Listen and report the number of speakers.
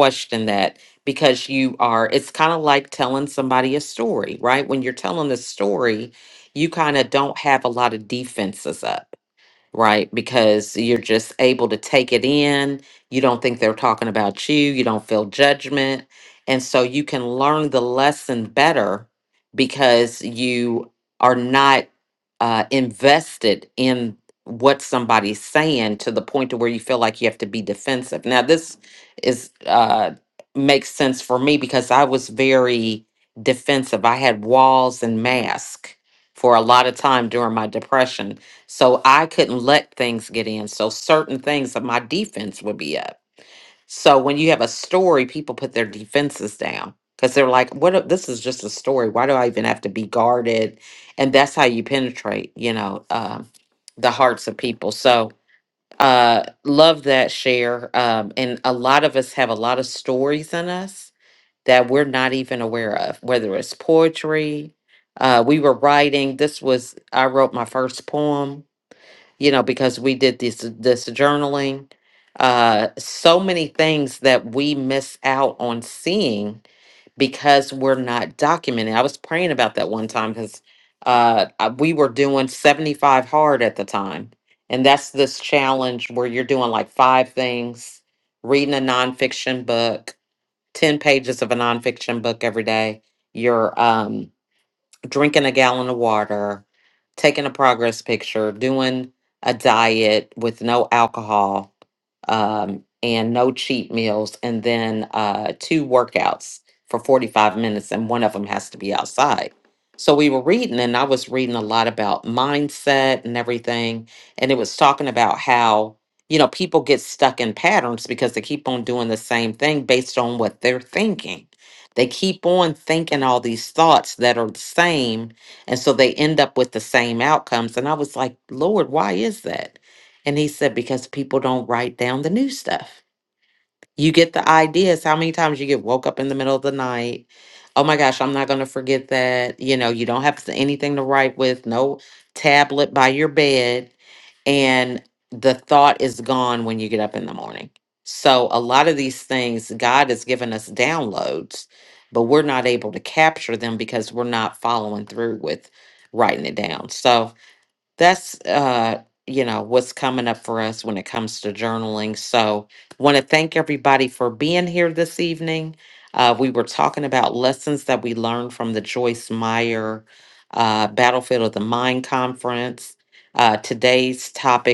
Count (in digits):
1